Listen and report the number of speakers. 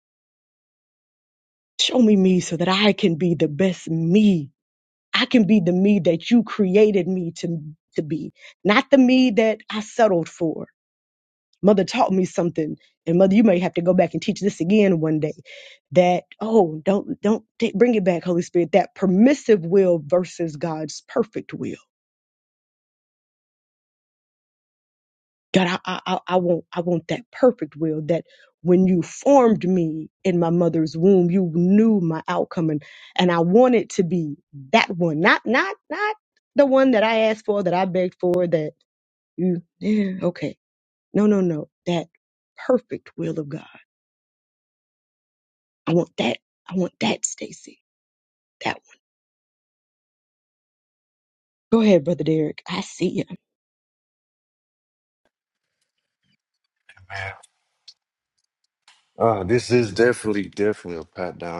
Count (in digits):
2